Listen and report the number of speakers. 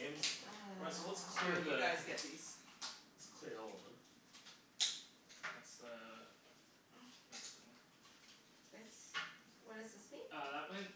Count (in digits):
4